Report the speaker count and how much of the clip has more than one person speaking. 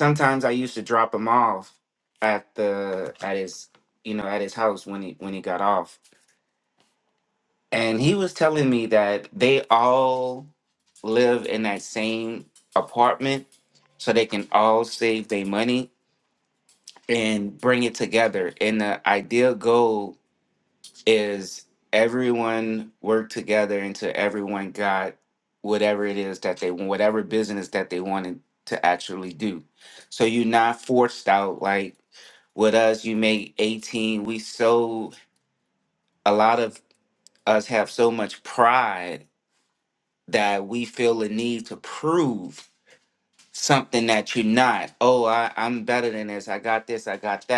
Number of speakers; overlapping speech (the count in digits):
1, no overlap